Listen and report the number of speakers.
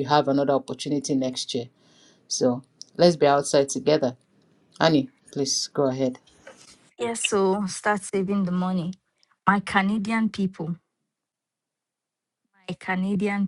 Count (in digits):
2